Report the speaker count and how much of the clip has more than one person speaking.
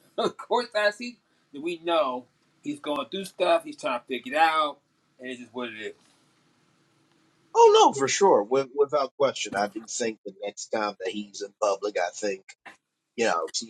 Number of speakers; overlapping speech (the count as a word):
two, no overlap